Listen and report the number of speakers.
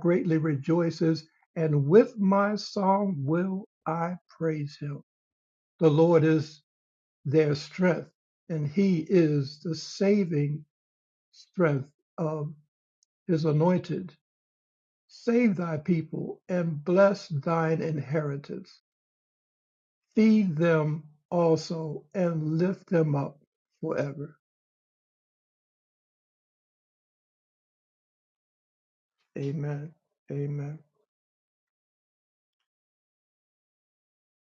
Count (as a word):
one